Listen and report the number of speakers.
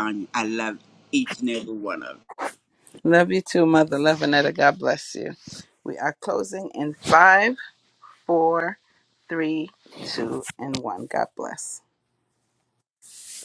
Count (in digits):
2